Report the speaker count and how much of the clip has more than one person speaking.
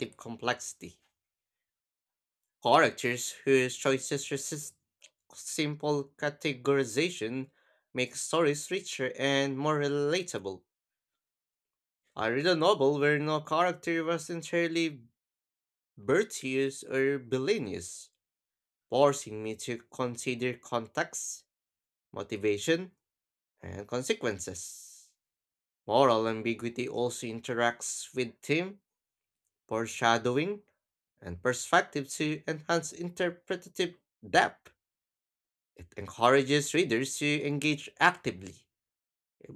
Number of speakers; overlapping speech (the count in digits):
1, no overlap